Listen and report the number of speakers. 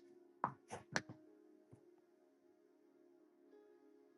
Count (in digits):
0